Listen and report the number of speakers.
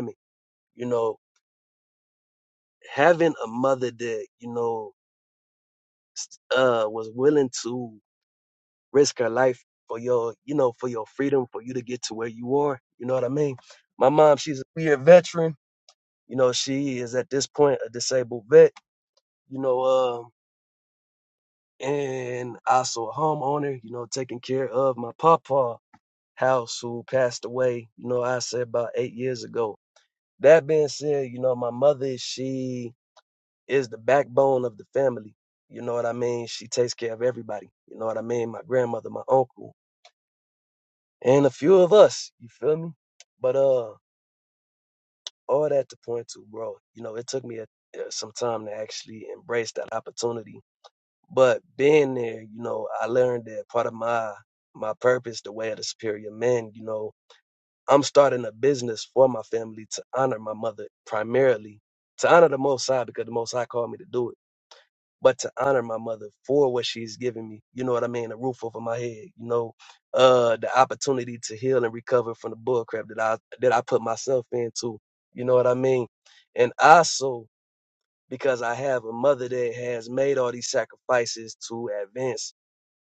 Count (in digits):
1